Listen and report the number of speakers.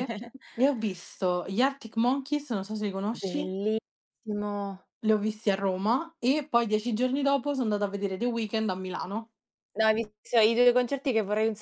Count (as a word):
two